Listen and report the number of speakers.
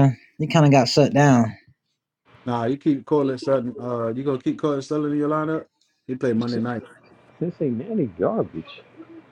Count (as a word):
three